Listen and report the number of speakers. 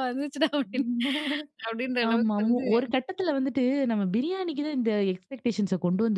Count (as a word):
two